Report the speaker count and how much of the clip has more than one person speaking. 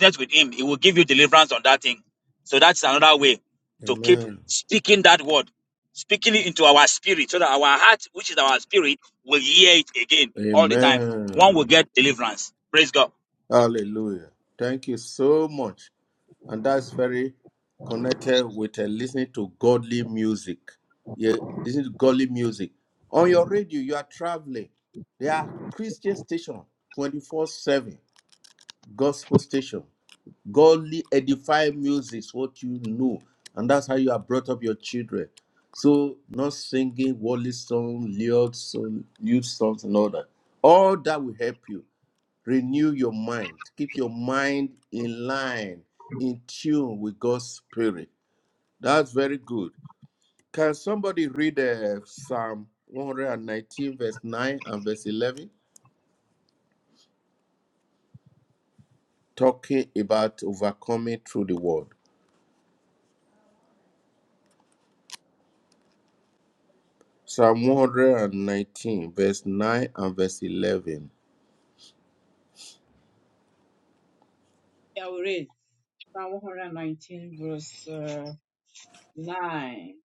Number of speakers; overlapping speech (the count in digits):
3, about 1%